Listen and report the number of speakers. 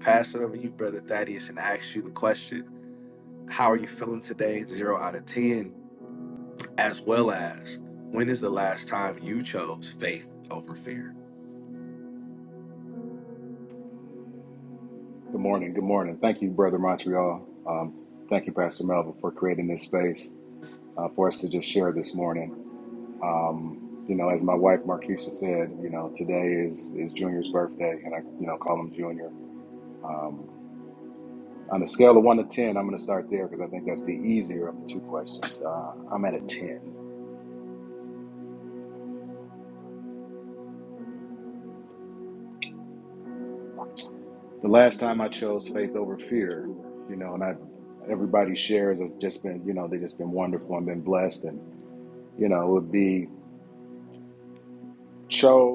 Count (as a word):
two